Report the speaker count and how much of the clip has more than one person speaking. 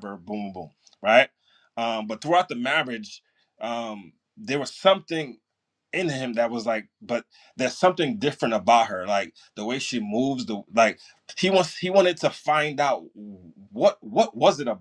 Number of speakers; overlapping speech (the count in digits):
1, no overlap